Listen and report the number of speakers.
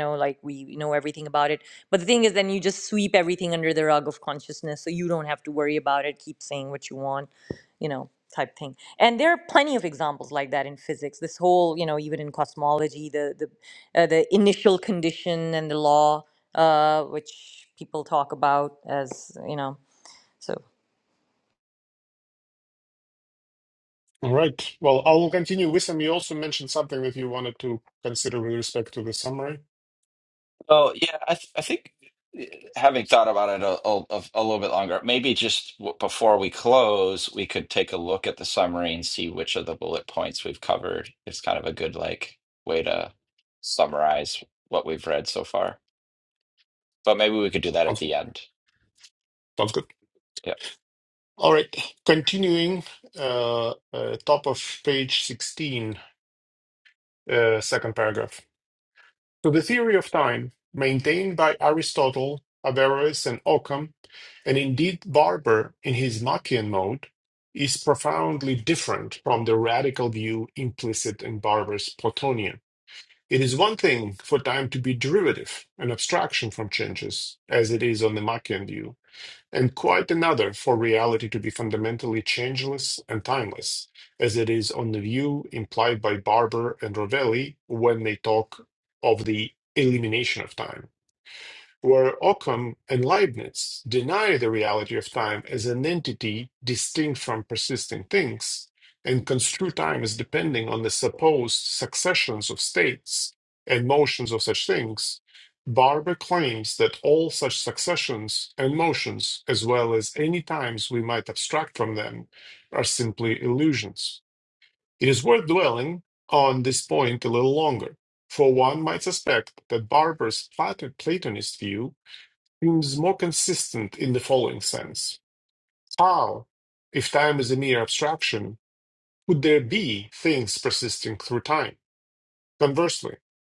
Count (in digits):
3